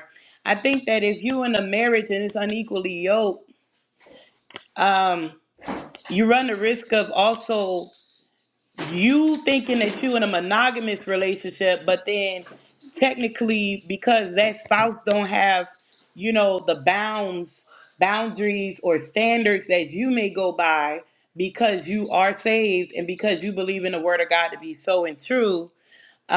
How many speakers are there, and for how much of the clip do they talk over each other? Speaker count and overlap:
one, no overlap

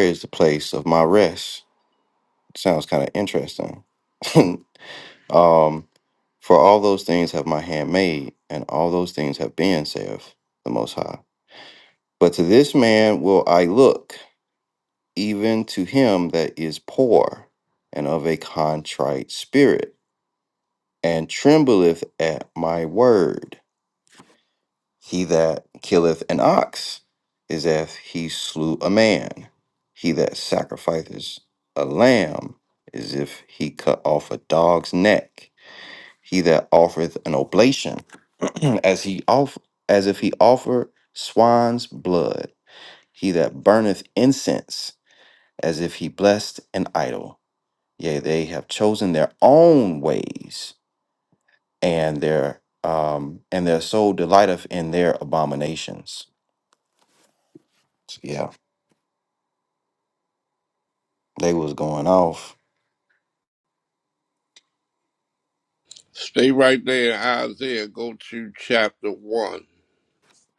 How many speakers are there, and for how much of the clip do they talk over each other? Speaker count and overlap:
two, no overlap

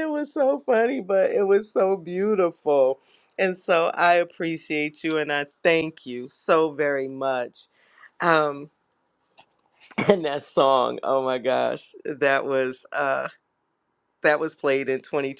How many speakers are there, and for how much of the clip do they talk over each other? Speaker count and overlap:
one, no overlap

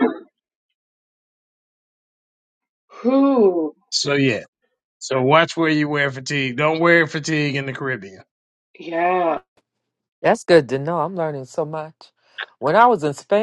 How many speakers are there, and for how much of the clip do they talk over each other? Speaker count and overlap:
three, no overlap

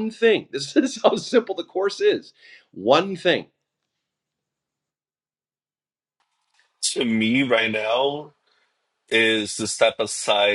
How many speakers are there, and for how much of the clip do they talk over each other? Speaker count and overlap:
two, no overlap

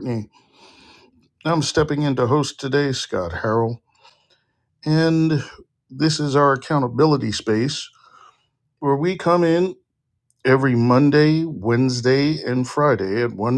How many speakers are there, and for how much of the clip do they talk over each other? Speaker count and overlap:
one, no overlap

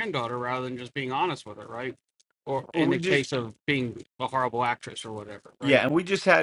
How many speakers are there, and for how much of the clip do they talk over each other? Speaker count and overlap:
two, about 12%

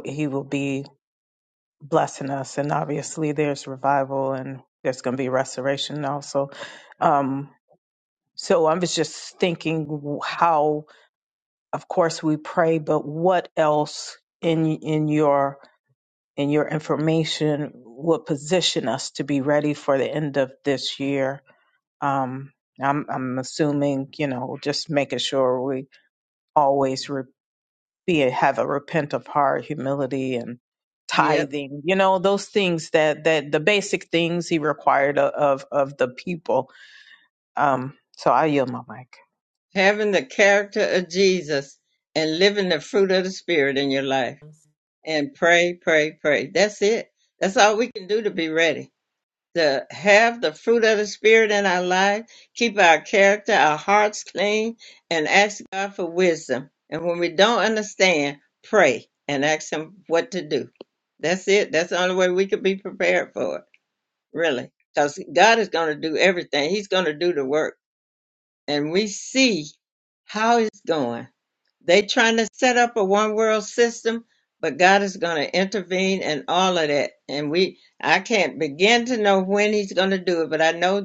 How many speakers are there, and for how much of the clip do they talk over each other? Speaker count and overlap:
two, under 1%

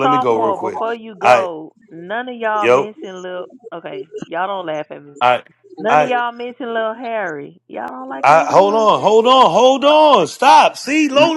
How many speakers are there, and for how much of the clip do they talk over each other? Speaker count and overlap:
two, about 19%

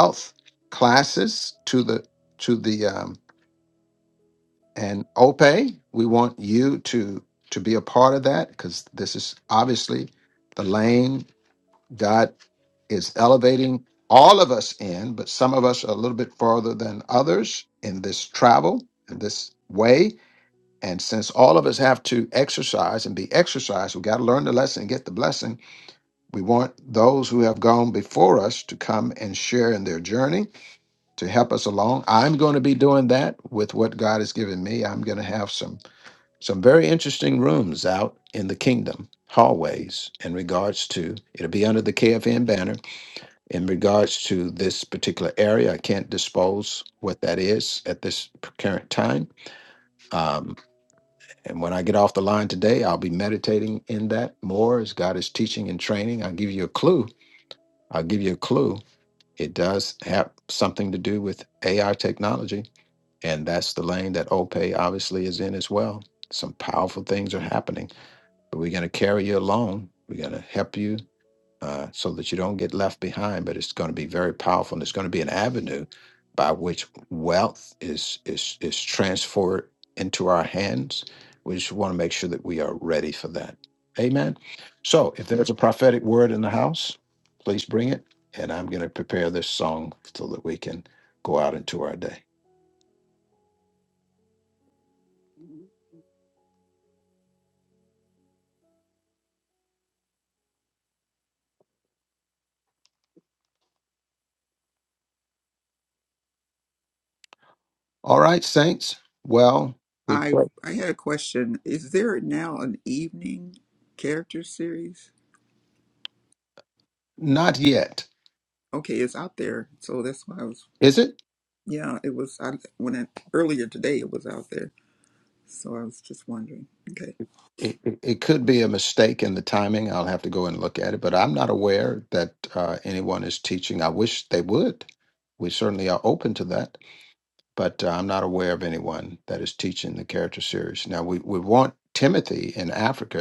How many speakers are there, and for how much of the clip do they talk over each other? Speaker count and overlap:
two, under 1%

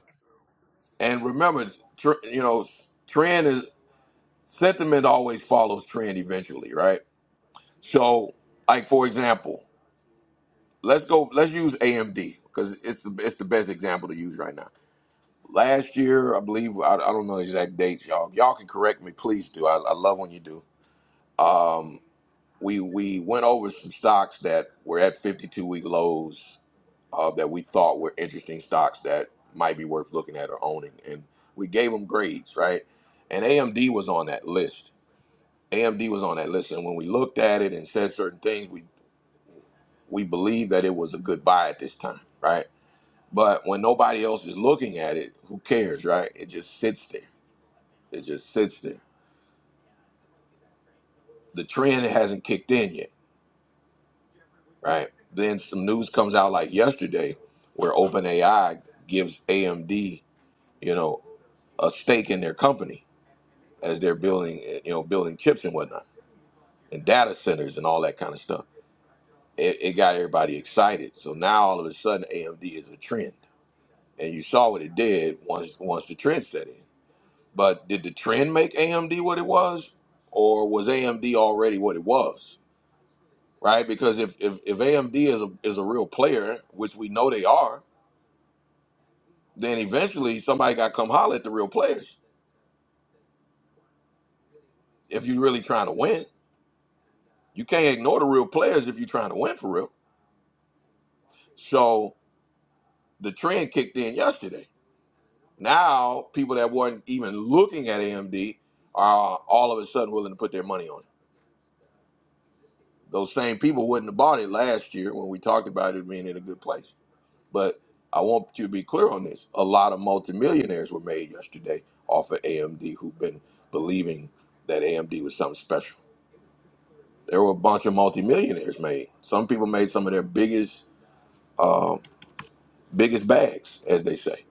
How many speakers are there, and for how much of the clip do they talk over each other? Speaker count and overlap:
one, no overlap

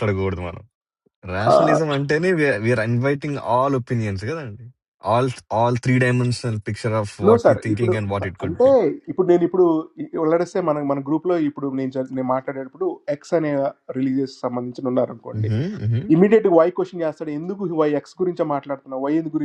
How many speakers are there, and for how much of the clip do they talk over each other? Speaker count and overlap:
two, about 11%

